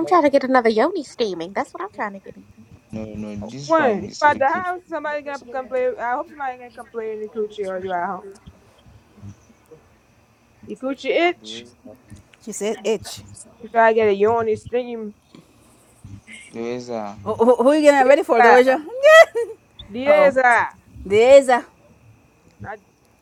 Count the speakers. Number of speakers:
4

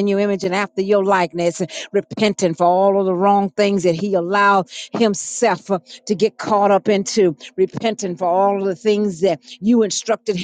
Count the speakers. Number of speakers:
1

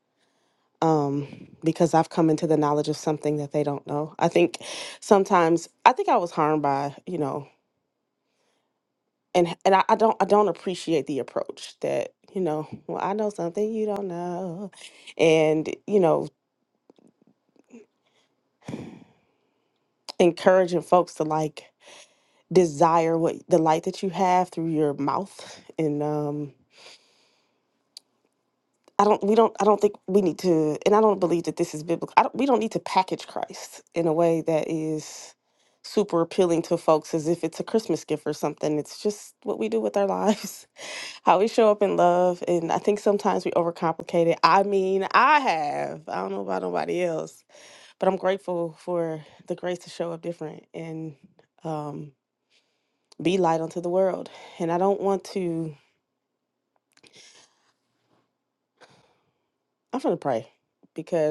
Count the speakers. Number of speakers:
1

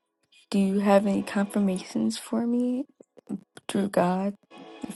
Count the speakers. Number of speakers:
1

